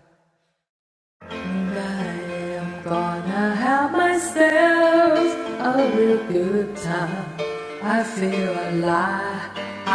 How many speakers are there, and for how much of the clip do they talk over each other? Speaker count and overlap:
1, no overlap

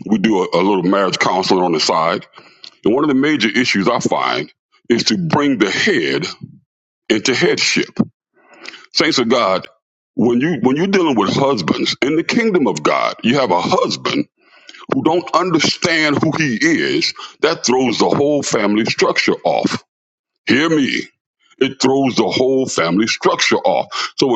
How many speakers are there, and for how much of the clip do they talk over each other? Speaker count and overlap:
1, no overlap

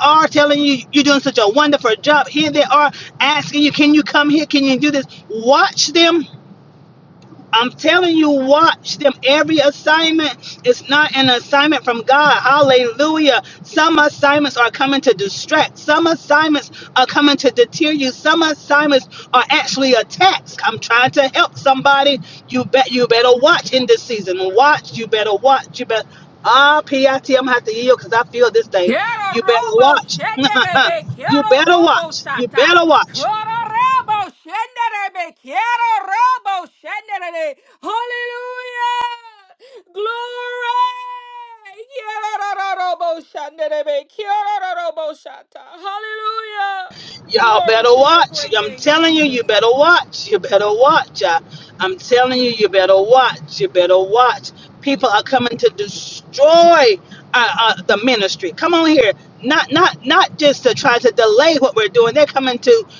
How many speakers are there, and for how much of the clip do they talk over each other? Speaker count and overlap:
2, about 7%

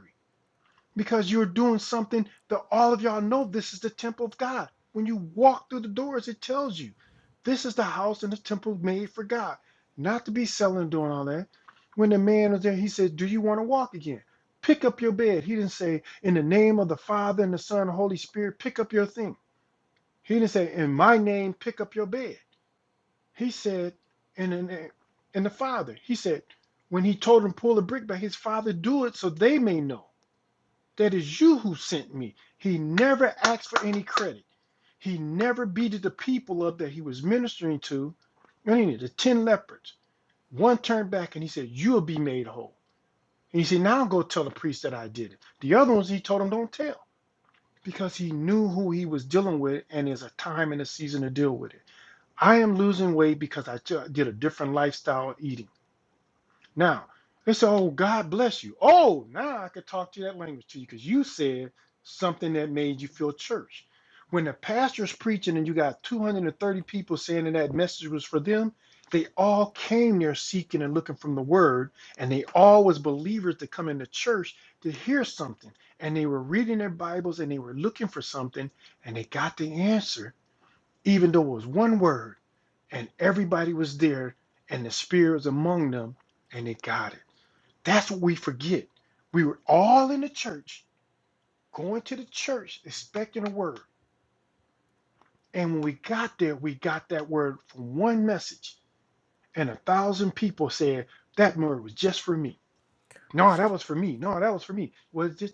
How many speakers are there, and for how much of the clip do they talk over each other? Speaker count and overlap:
1, no overlap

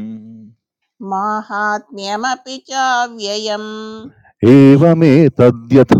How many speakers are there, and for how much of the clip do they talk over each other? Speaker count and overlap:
2, about 3%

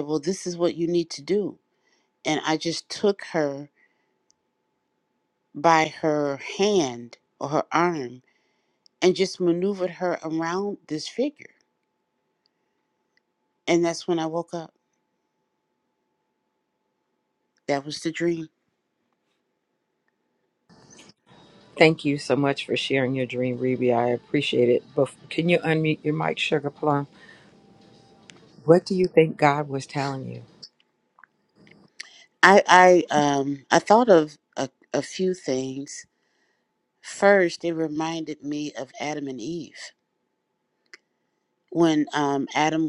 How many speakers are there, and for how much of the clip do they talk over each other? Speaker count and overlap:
2, no overlap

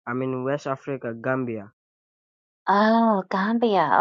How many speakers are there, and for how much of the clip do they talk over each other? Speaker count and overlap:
2, no overlap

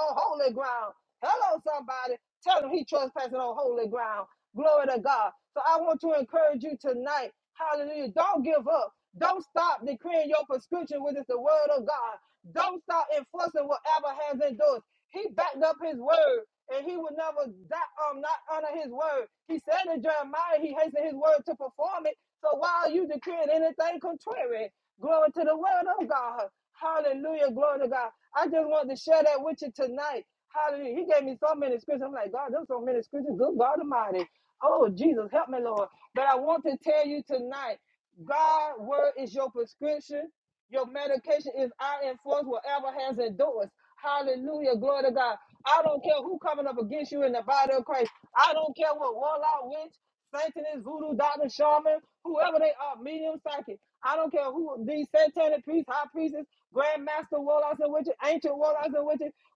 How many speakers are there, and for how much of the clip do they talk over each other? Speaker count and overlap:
1, no overlap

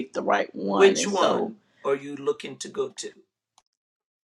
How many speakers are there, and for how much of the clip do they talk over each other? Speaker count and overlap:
2, about 20%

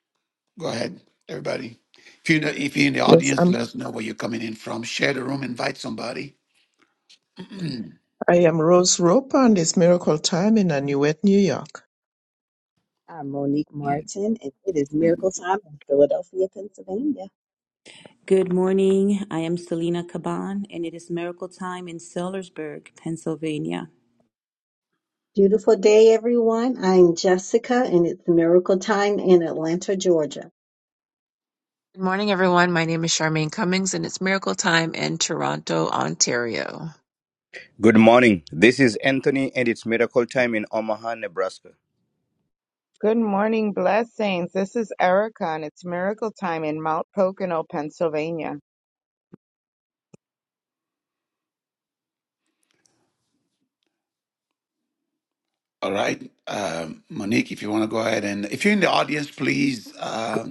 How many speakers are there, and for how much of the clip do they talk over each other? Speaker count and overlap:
8, about 1%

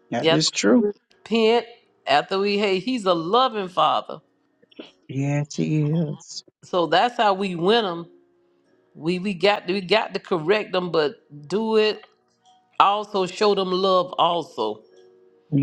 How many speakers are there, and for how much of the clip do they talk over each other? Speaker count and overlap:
2, about 2%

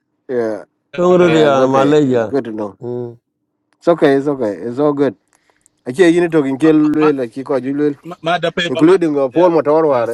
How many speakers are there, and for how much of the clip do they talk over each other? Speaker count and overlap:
3, about 20%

